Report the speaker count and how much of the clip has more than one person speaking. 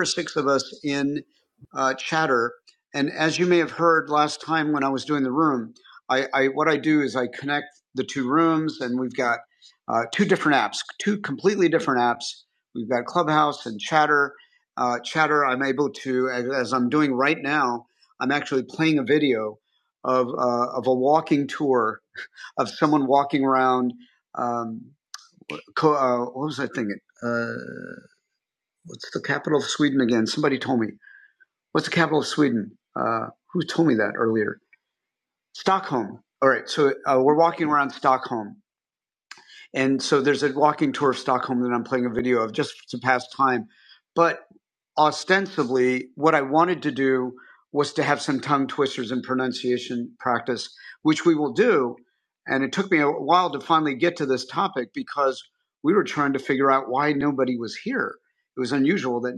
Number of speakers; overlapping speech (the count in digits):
1, no overlap